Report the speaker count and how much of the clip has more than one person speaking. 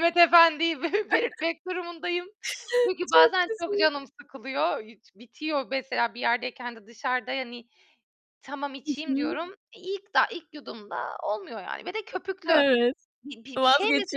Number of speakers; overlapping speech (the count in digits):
2, about 14%